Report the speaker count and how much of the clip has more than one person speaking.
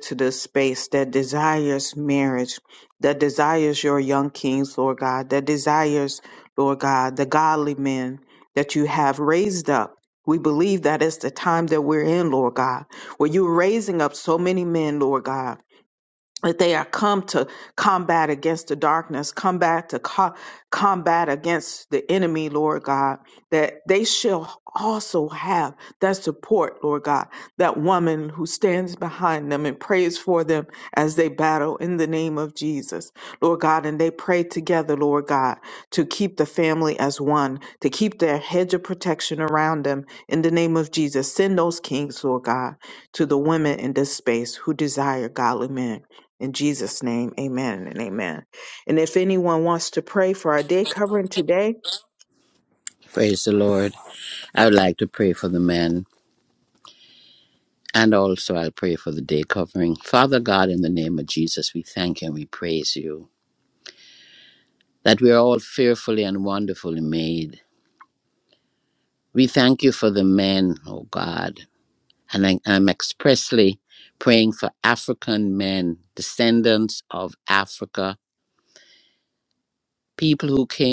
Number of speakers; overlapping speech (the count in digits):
2, no overlap